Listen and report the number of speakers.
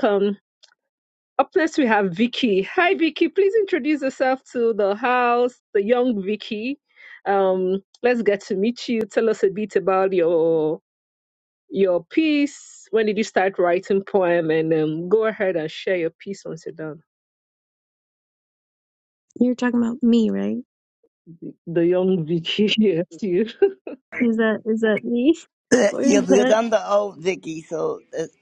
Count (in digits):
3